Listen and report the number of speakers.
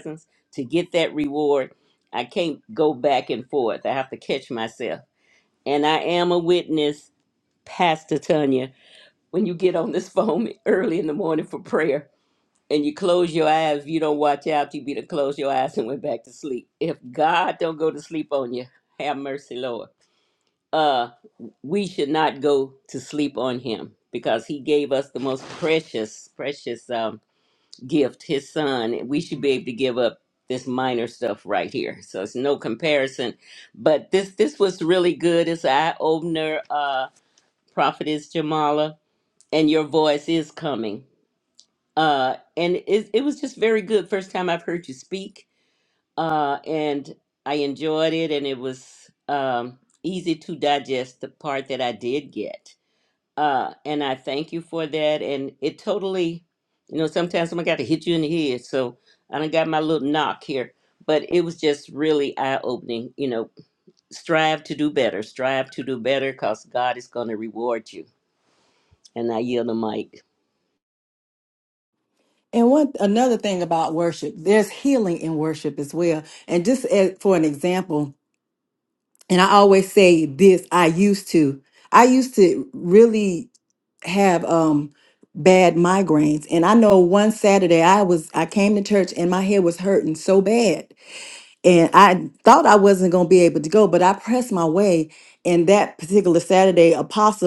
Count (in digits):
2